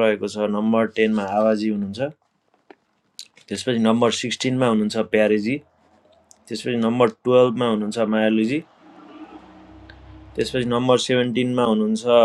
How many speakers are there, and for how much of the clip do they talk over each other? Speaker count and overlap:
1, no overlap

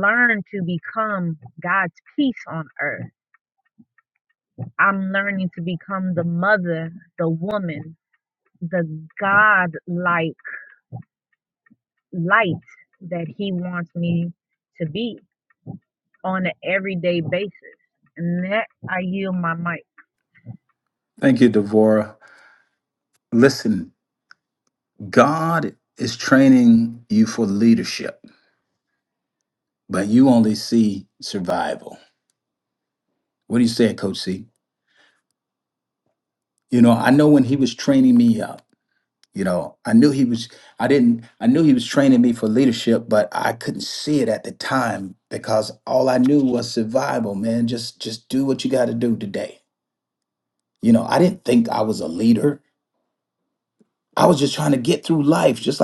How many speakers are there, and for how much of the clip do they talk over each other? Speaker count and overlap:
2, no overlap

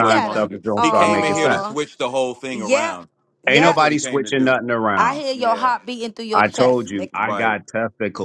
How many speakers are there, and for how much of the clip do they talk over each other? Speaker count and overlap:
3, about 62%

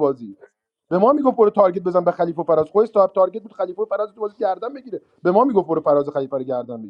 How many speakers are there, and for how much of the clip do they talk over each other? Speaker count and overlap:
1, no overlap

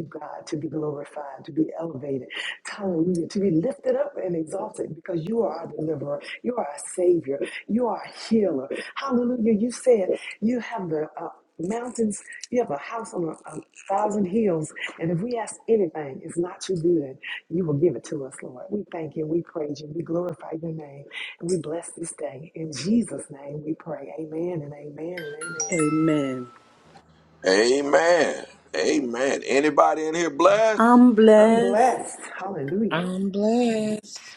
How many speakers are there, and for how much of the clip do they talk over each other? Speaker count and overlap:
4, about 2%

